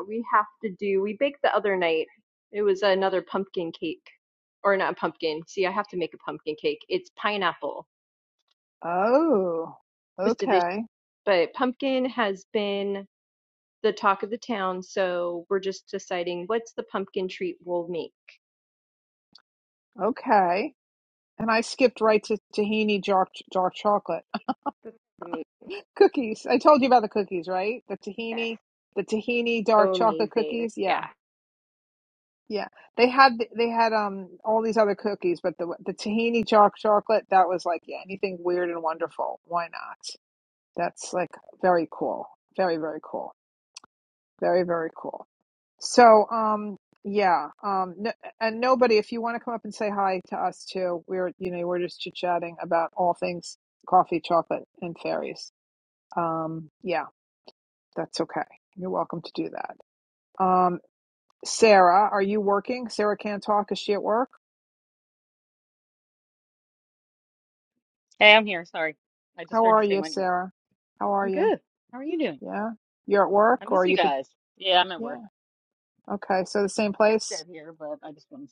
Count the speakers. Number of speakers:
3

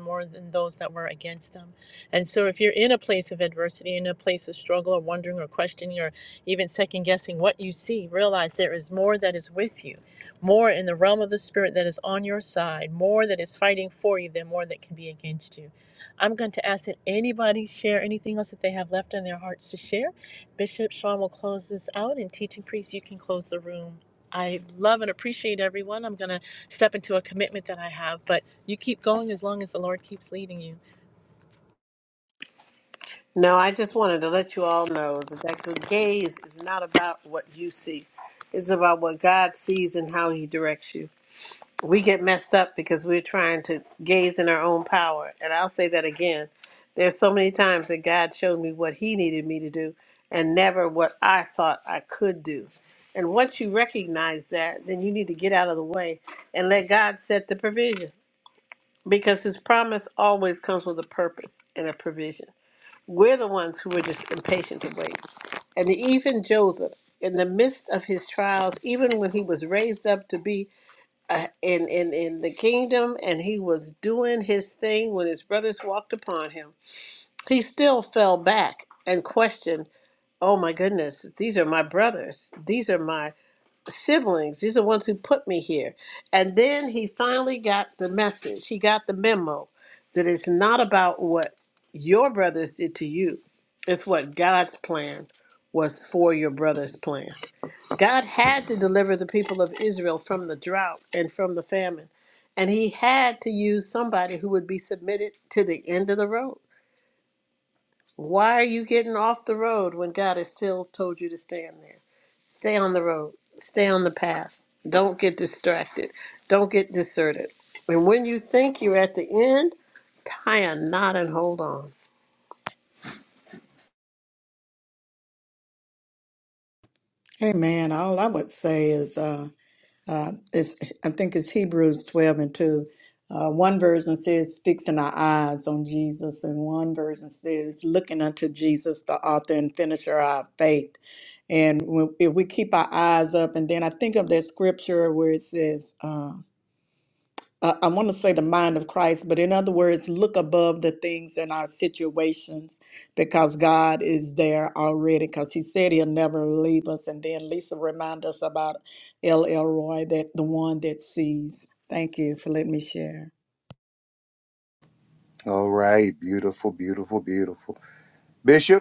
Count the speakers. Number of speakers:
4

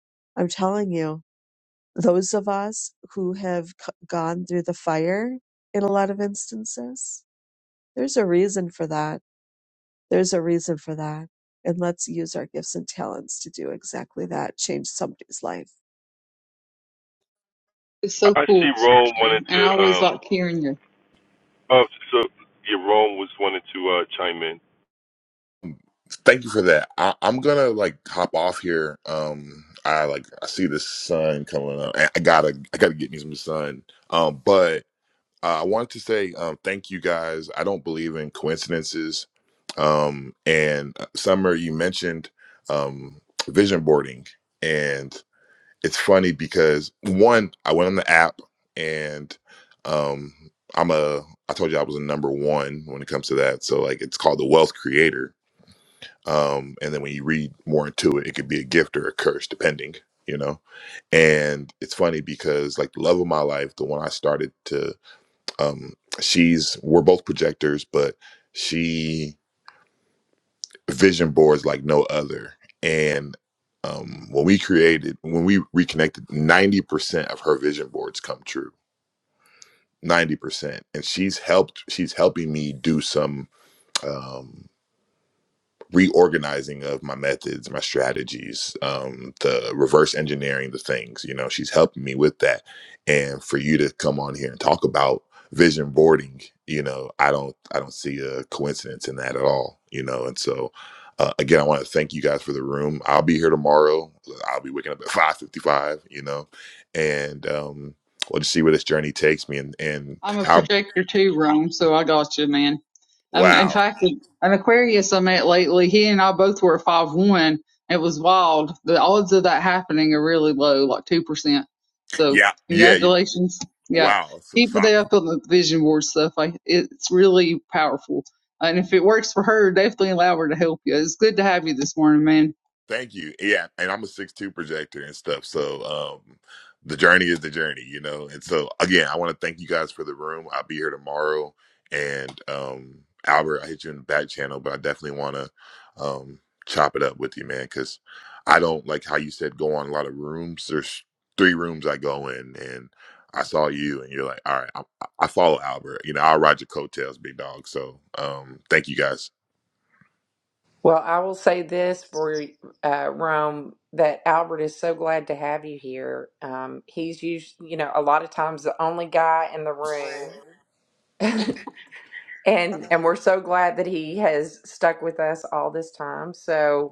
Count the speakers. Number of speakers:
5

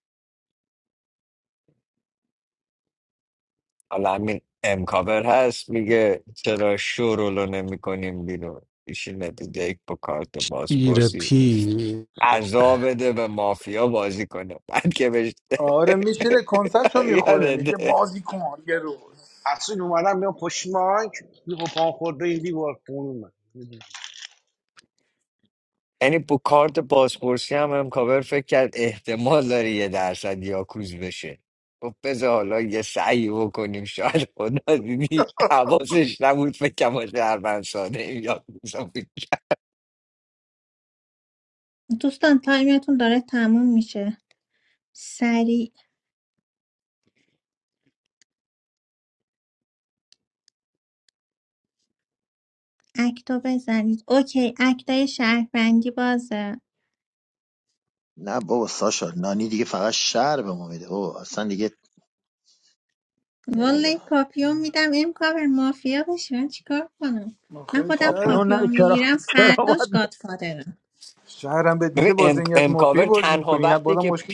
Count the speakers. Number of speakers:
6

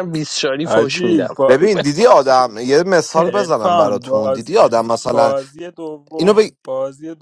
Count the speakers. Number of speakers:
3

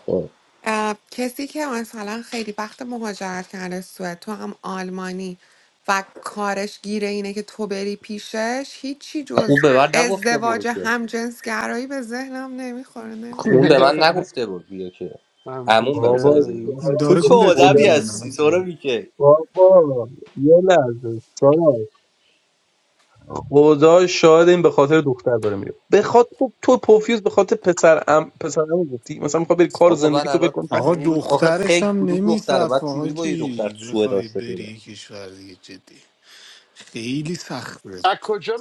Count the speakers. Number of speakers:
5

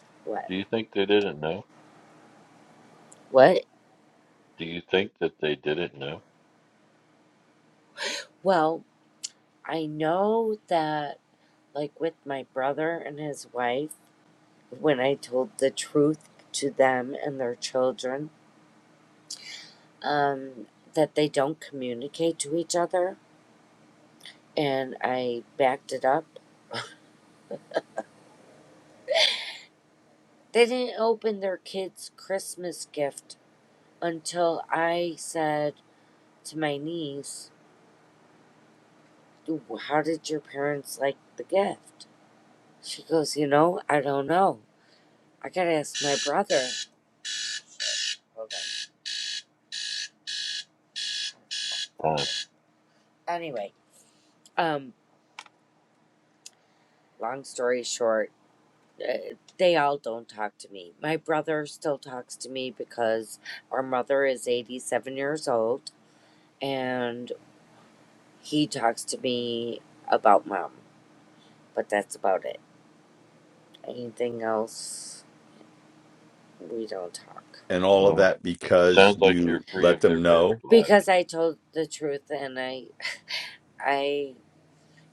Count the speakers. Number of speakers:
3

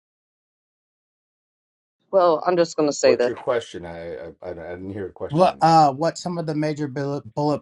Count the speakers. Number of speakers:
3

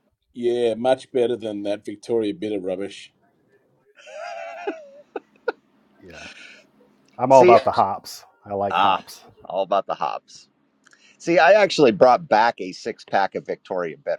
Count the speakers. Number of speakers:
3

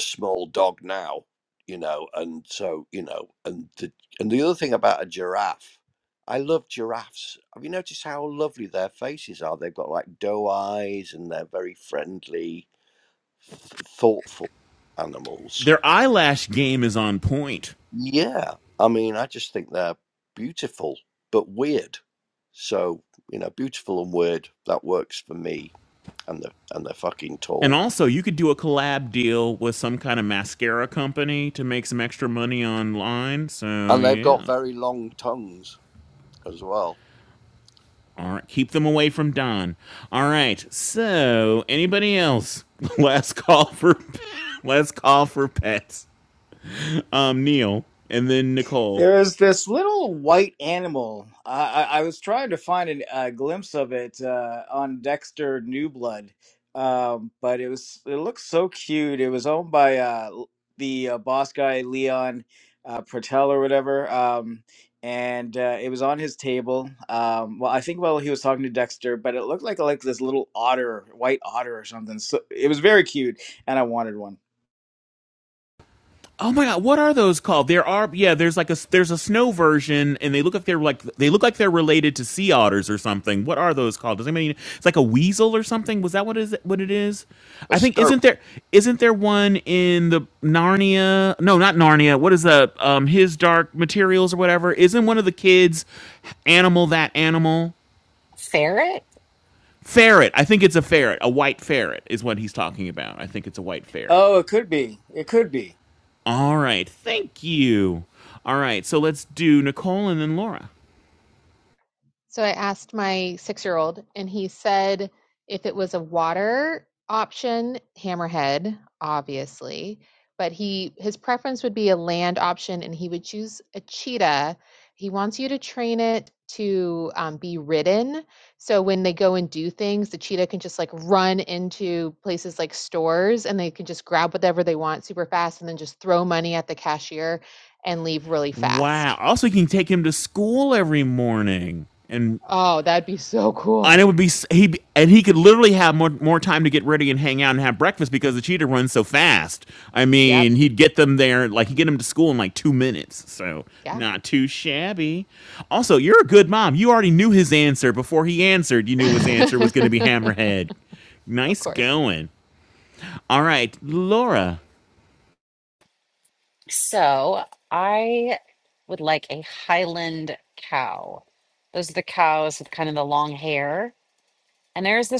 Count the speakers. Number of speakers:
5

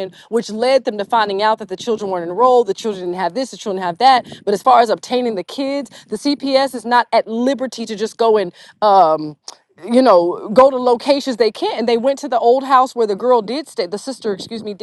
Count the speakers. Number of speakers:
1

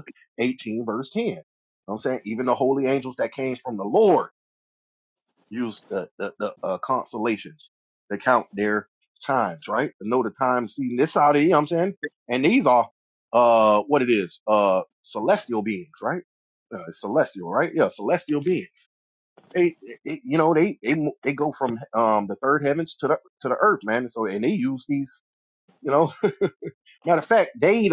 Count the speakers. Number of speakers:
1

